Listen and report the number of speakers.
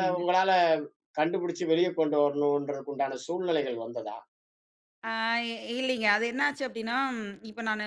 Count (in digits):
2